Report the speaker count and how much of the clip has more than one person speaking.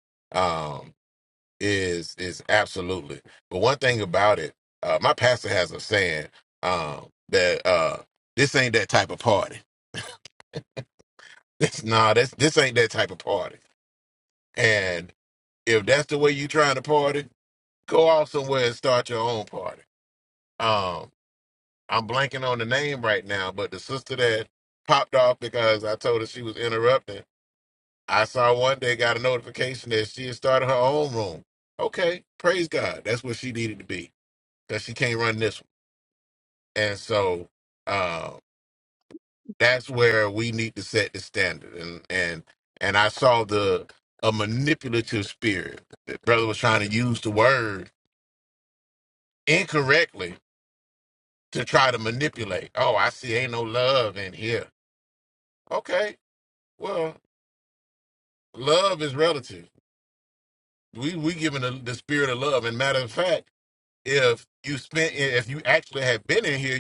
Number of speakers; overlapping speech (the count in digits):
1, no overlap